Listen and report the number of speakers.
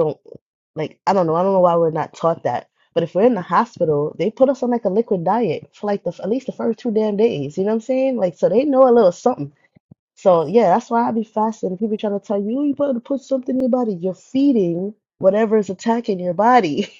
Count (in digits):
1